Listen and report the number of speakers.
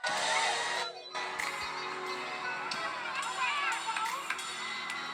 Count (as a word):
zero